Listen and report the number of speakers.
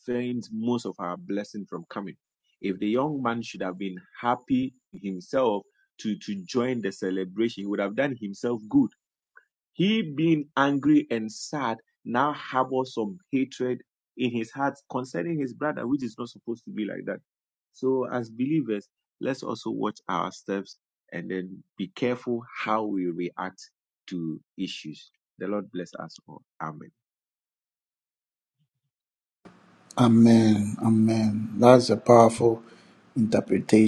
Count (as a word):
two